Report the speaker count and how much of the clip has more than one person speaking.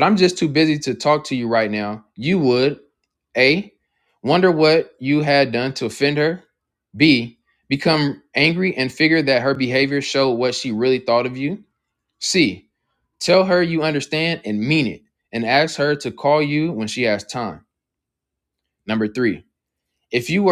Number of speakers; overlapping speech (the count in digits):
1, no overlap